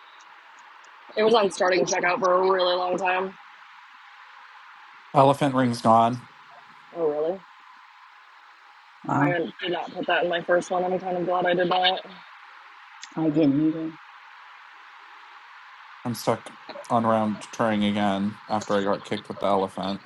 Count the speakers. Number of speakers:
3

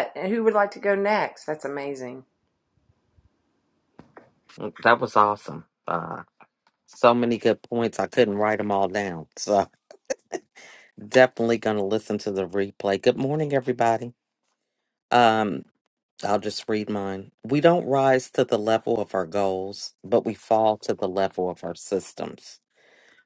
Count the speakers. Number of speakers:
2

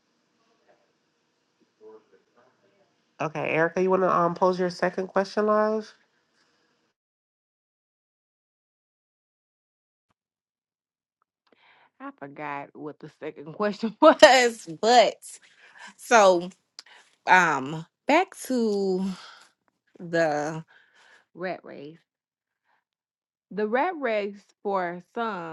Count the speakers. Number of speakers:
2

